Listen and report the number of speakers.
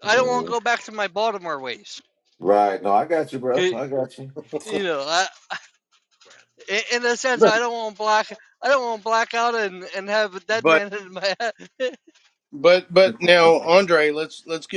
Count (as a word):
three